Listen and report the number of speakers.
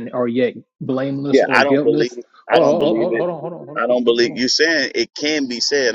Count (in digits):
2